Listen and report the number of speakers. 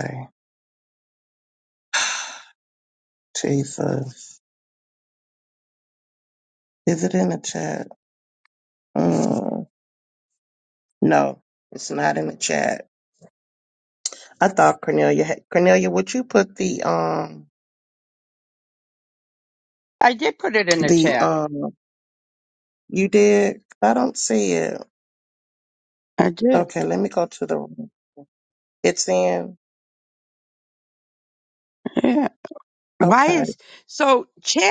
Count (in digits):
2